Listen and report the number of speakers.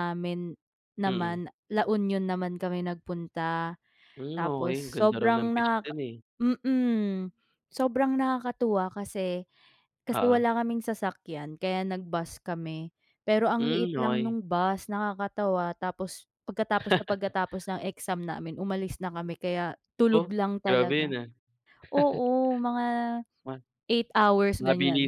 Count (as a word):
two